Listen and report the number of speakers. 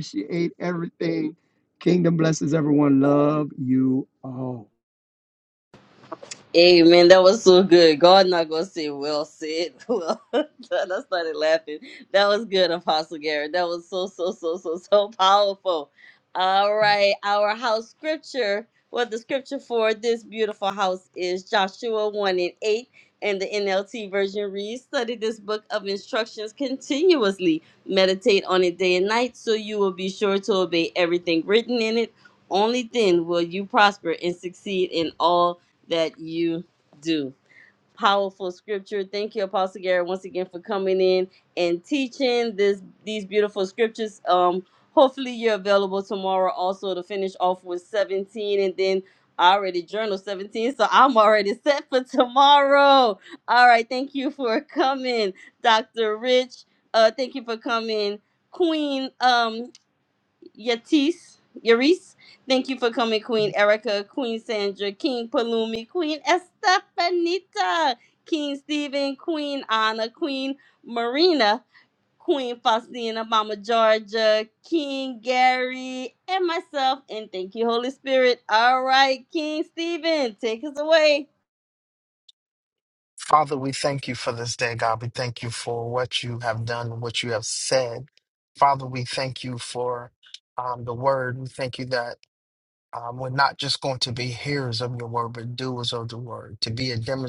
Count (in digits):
3